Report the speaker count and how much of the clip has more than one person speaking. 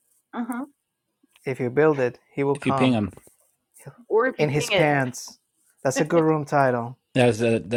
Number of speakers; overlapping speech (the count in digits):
3, about 12%